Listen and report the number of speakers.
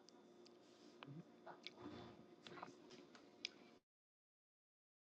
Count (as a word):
zero